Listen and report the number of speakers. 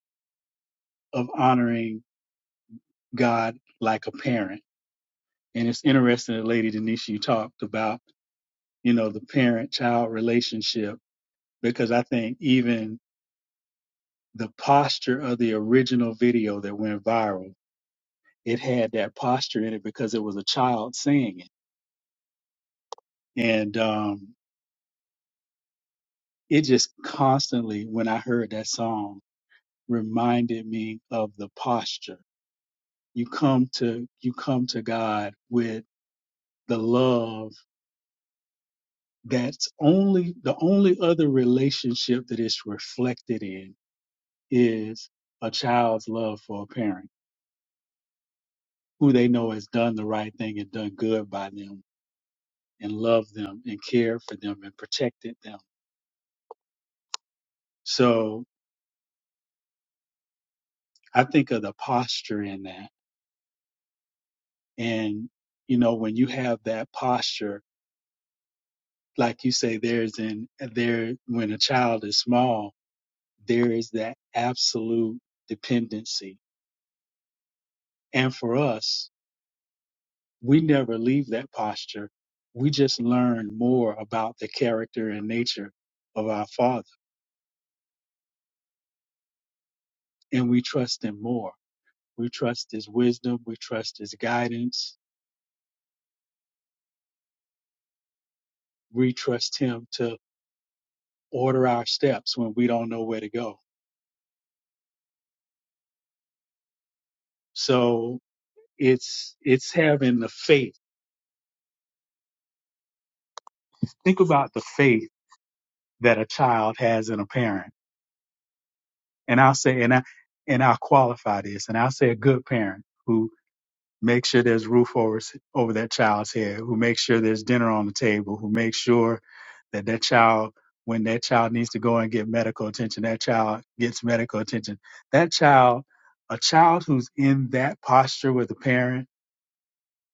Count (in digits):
1